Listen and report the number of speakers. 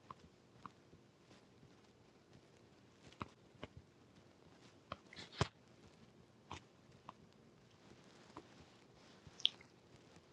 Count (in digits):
0